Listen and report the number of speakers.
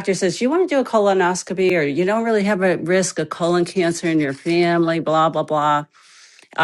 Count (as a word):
one